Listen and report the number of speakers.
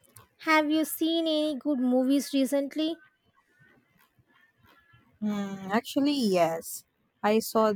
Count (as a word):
two